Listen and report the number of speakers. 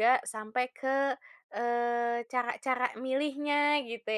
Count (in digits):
1